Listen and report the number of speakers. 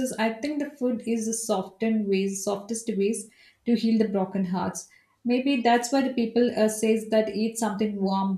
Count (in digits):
1